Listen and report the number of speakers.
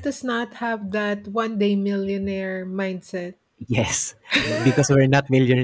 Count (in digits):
2